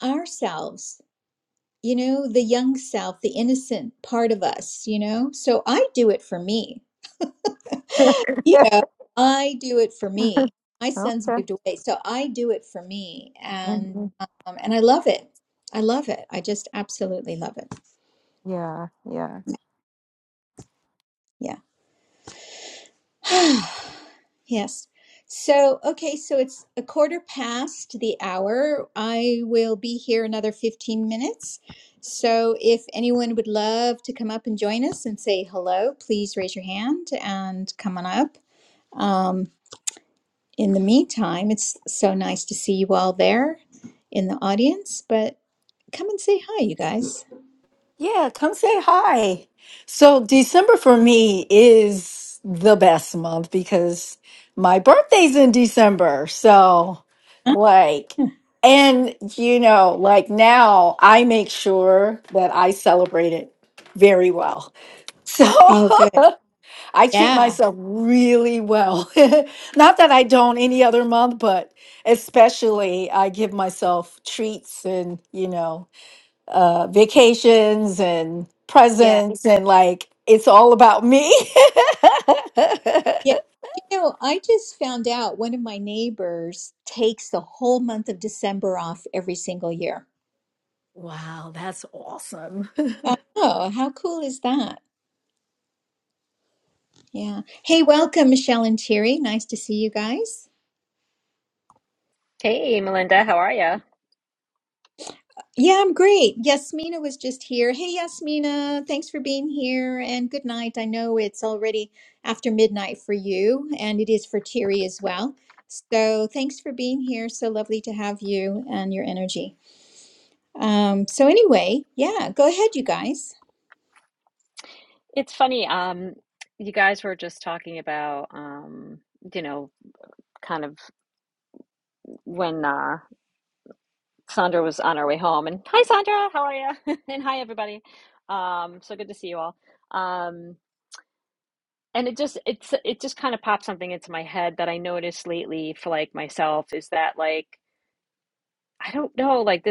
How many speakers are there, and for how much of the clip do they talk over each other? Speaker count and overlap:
4, about 1%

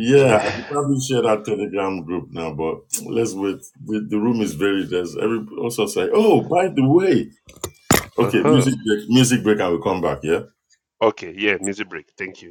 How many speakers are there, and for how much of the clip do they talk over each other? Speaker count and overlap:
2, about 7%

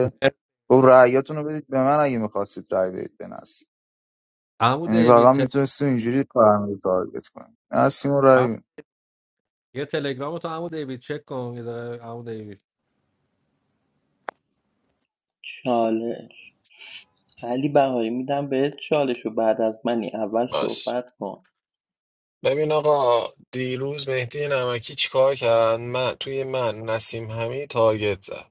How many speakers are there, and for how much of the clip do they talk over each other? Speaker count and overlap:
4, about 4%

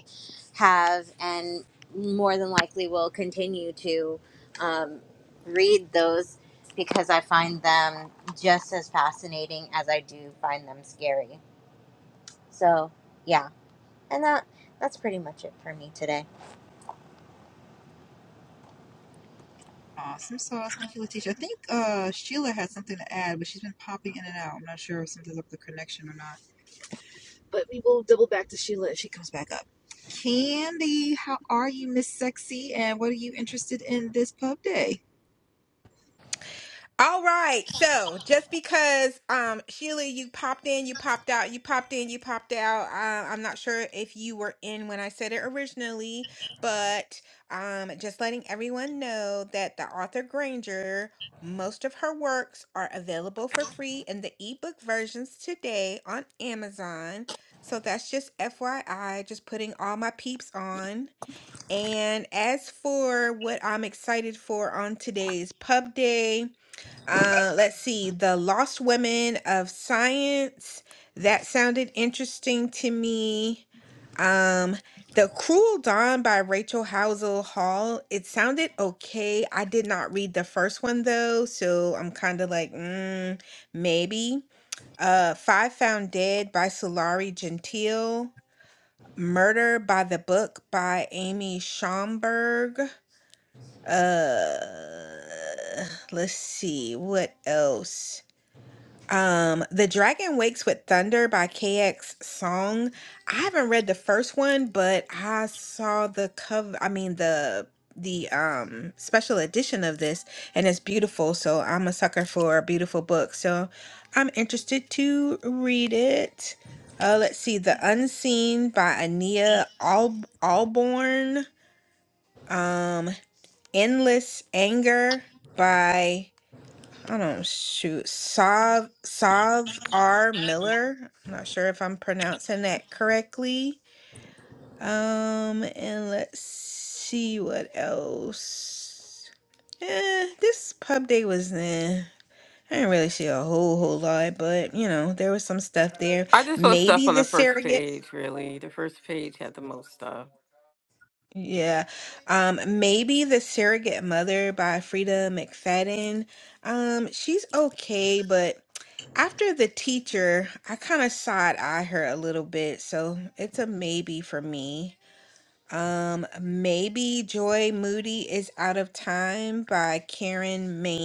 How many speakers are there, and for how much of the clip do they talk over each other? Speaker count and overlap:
4, about 1%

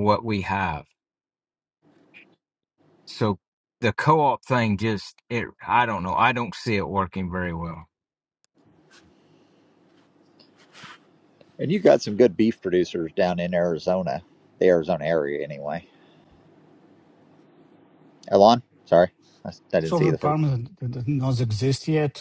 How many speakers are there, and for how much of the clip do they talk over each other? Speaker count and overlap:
3, about 2%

